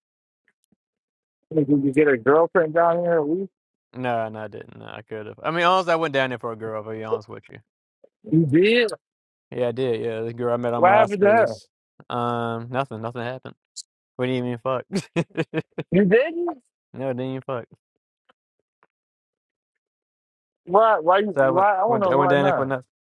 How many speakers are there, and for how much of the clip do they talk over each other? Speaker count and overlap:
2, about 9%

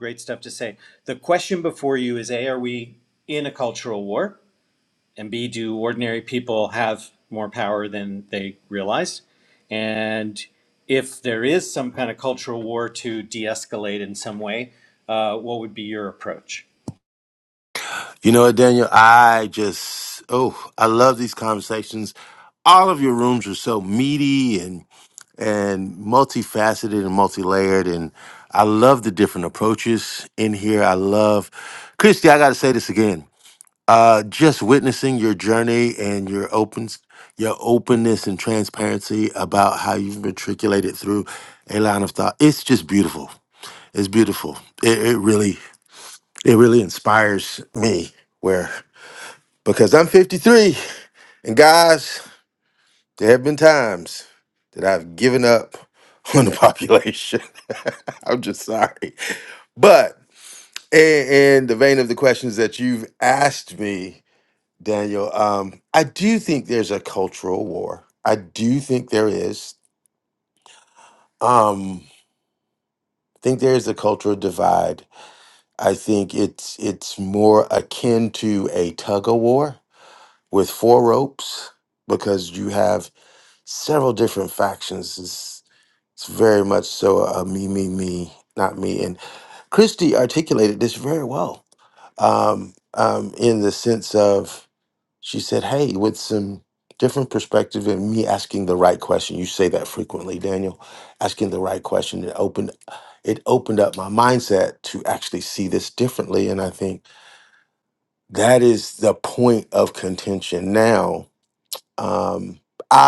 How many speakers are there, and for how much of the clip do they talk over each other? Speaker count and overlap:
2, no overlap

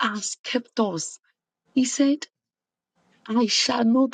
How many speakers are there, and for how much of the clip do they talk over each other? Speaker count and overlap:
1, no overlap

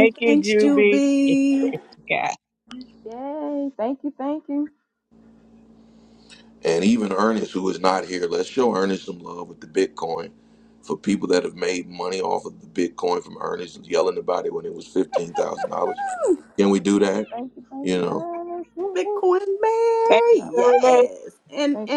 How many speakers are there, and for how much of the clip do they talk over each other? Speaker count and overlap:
4, about 15%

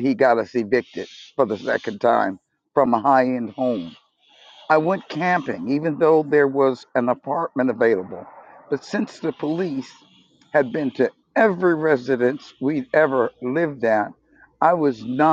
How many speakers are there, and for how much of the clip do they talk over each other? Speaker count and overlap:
1, no overlap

